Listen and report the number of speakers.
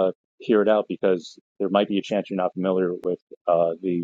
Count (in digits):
1